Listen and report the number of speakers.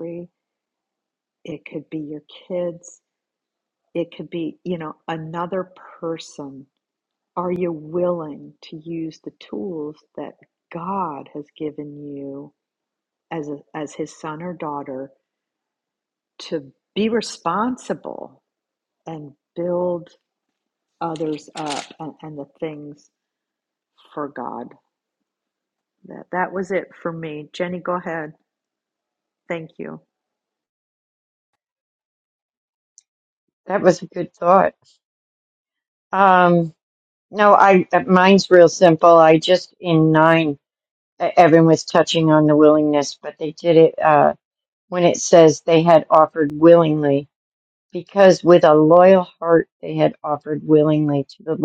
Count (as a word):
two